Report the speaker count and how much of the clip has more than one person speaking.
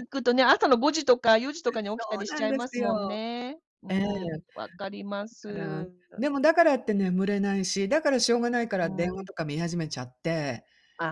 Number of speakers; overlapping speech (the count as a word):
two, about 19%